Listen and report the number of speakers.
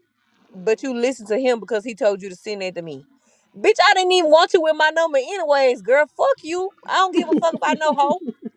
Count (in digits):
1